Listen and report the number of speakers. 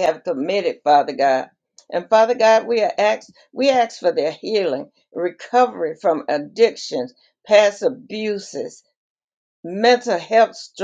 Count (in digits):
1